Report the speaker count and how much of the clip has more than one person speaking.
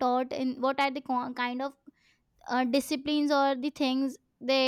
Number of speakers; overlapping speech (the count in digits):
1, no overlap